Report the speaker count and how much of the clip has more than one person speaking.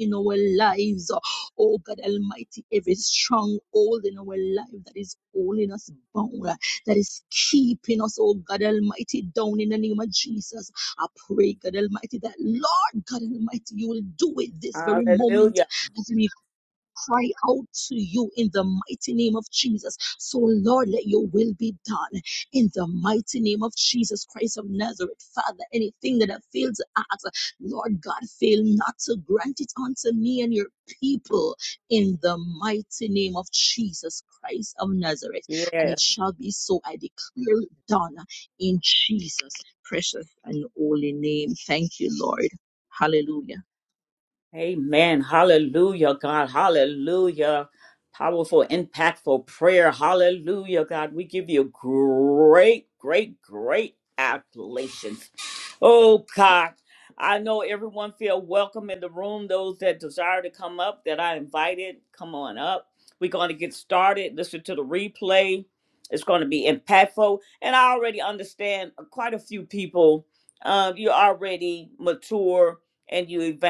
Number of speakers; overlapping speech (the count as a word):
two, about 1%